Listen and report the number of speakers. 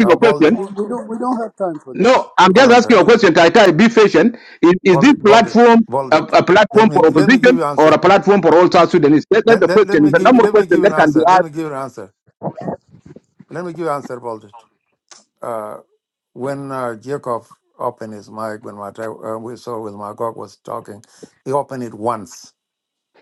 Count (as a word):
three